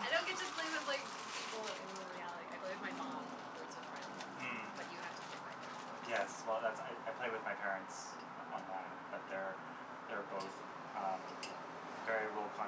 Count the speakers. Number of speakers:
two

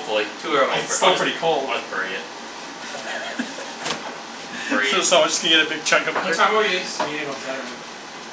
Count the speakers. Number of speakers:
three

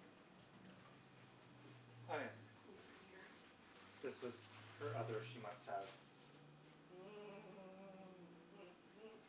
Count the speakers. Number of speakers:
two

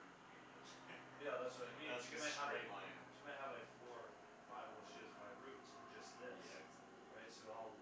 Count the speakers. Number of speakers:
two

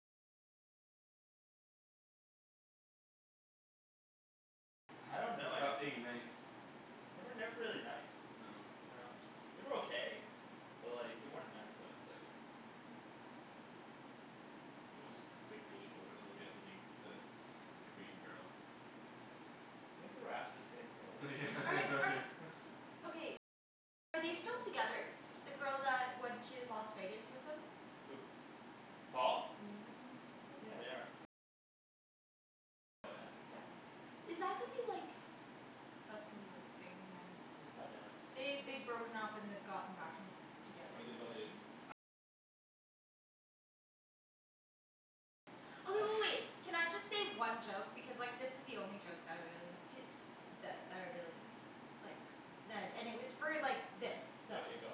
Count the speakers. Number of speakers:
three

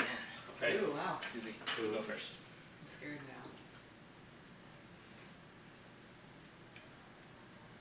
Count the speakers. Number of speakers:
two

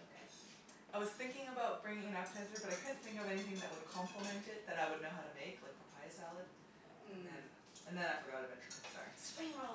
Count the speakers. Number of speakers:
two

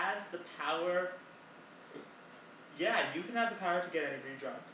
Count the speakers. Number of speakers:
one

